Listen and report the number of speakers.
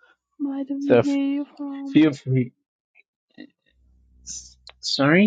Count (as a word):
two